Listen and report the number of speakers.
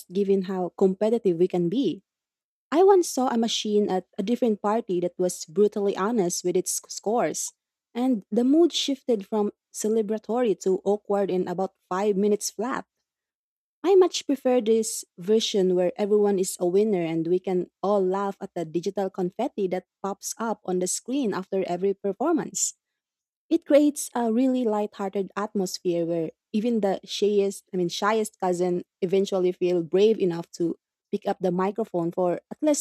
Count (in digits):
1